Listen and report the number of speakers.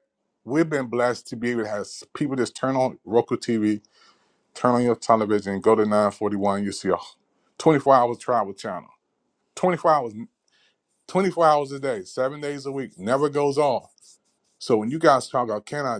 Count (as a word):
one